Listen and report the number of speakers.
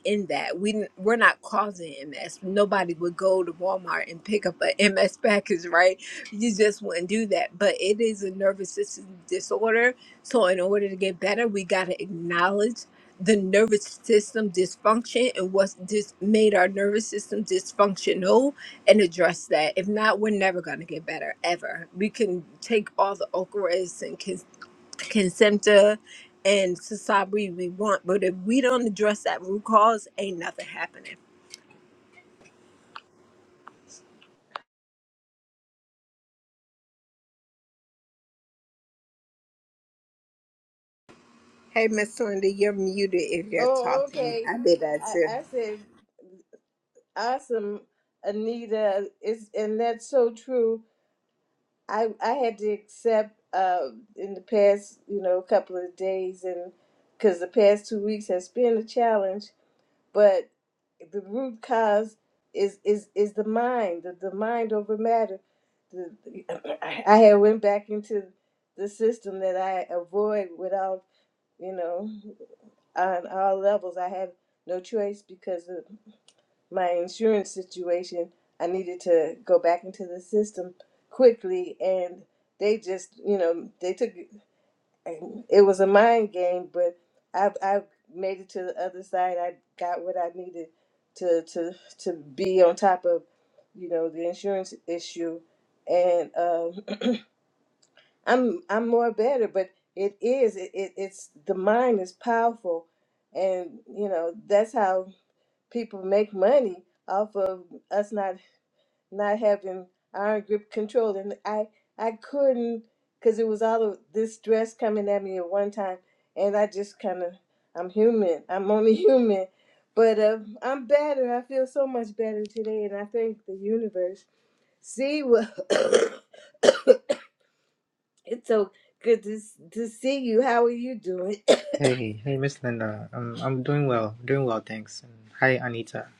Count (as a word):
three